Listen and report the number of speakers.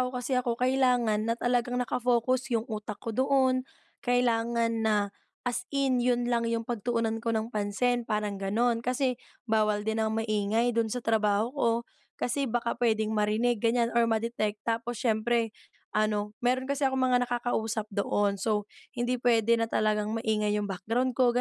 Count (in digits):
1